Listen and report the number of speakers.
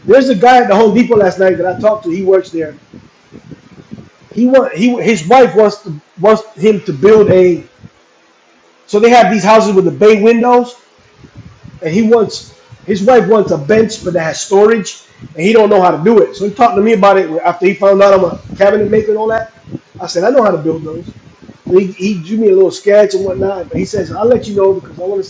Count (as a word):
one